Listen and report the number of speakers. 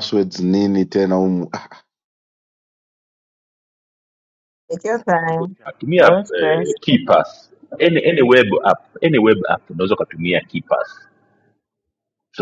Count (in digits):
3